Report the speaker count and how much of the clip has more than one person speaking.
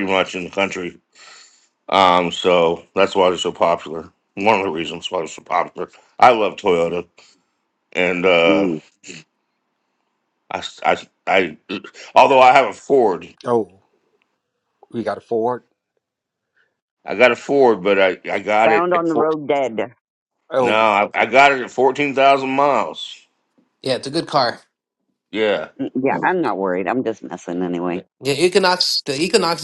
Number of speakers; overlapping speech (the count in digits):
4, about 4%